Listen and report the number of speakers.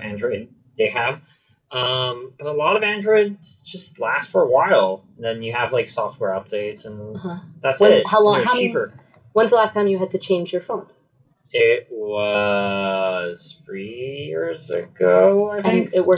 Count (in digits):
2